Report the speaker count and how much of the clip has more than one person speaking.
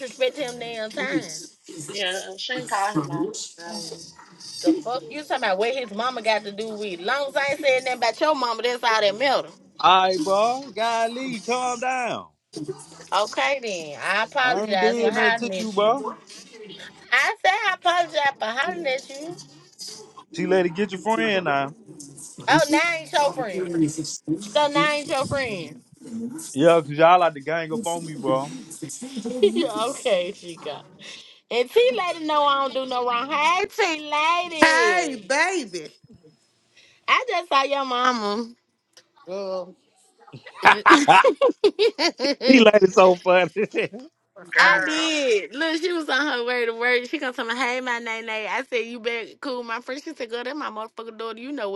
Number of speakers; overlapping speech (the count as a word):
four, about 5%